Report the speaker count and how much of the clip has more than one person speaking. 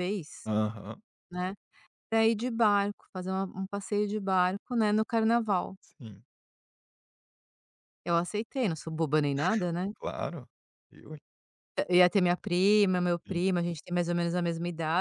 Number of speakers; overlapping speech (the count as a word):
two, about 1%